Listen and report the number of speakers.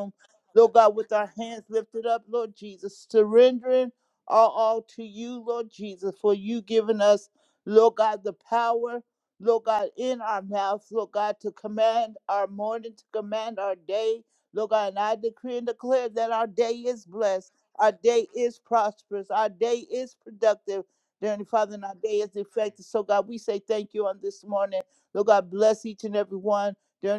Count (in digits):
1